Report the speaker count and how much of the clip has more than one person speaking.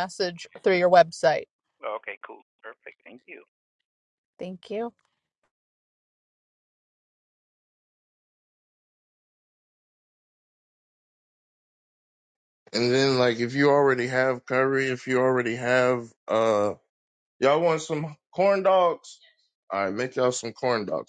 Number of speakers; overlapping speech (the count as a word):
three, no overlap